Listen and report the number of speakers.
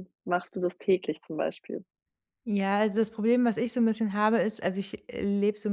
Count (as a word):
two